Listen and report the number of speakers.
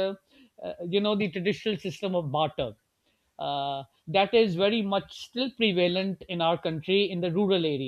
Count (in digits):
1